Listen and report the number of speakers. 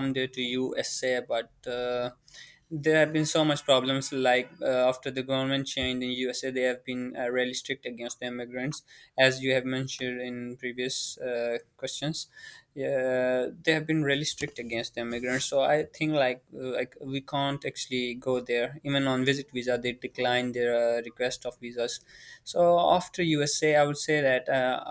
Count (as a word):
one